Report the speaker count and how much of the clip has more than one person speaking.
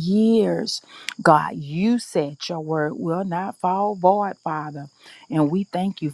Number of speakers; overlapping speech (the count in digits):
1, no overlap